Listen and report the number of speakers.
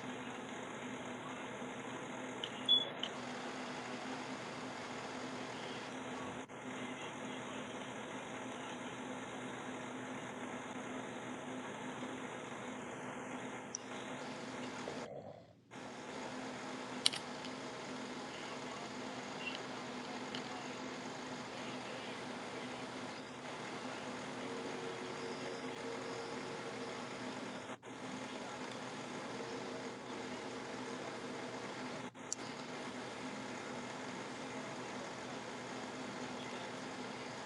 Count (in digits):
0